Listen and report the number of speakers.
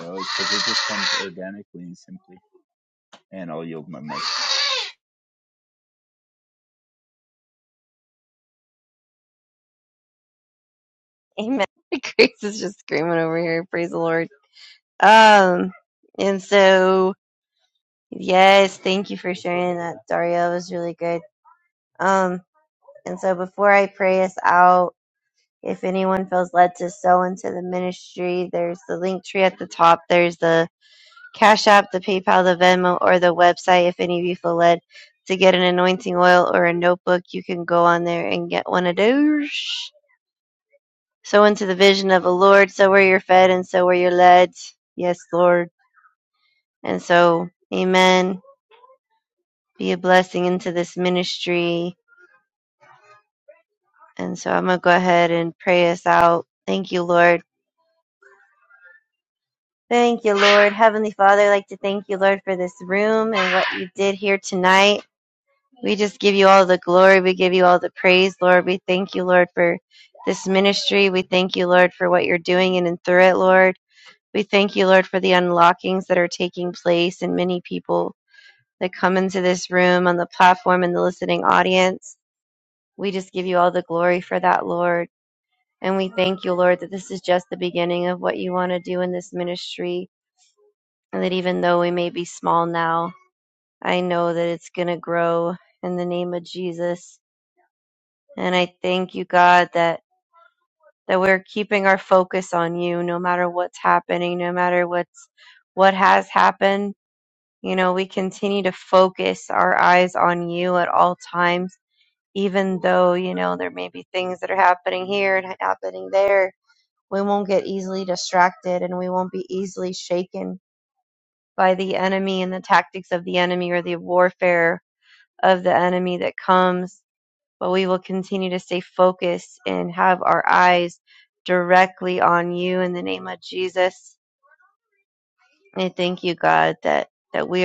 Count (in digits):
2